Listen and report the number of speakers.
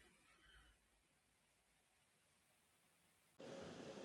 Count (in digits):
0